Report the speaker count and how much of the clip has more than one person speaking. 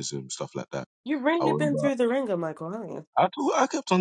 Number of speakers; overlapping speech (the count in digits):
2, about 11%